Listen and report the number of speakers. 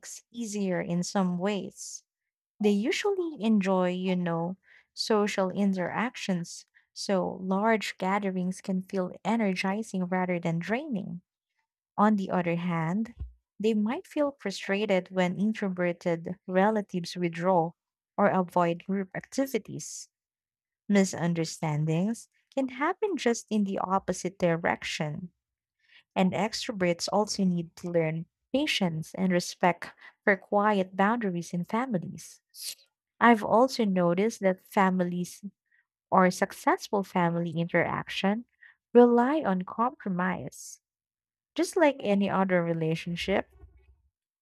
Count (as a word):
one